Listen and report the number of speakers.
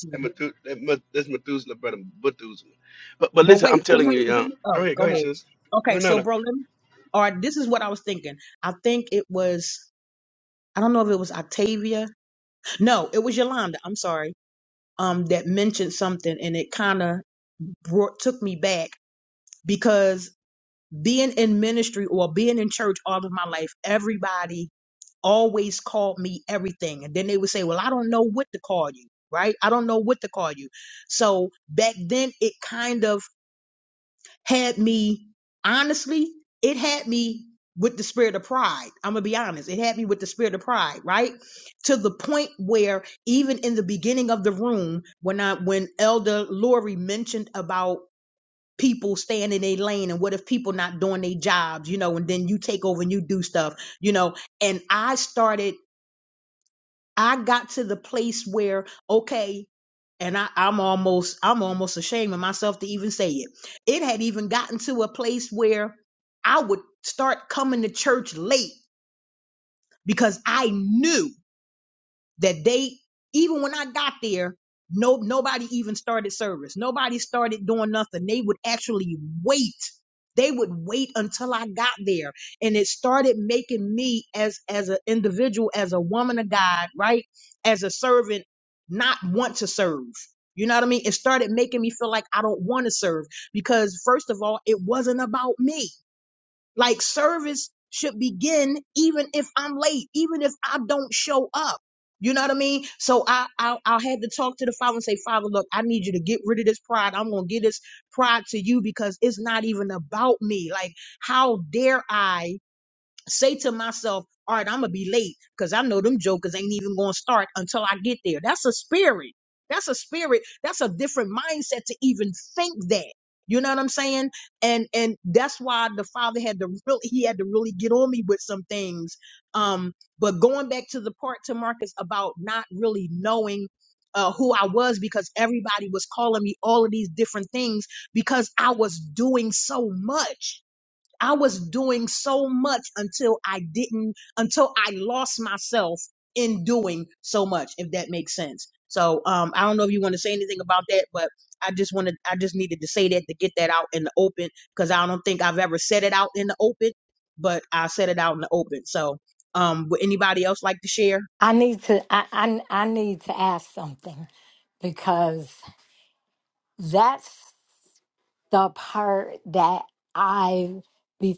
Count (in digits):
3